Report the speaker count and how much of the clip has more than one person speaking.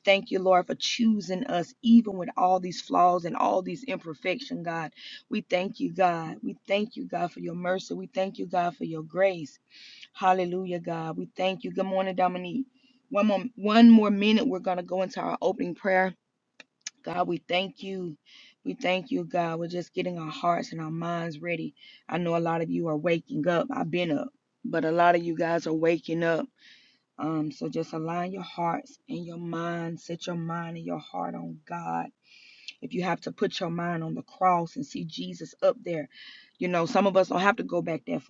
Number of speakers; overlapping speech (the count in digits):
1, no overlap